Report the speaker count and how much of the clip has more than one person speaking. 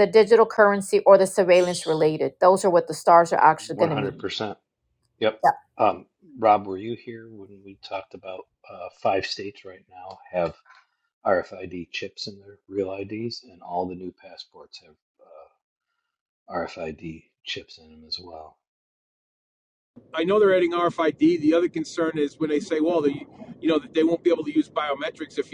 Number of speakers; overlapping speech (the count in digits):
3, about 1%